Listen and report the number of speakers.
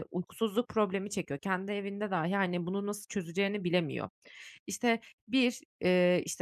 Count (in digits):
1